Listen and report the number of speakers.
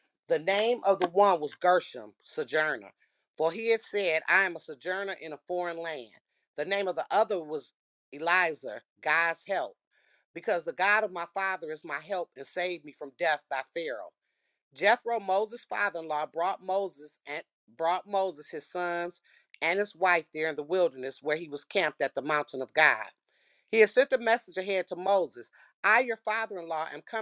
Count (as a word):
one